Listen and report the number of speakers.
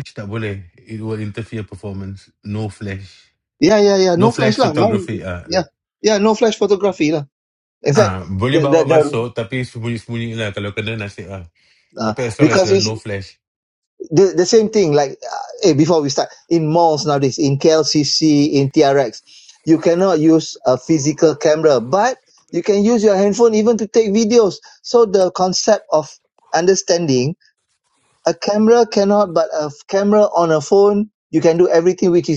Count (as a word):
two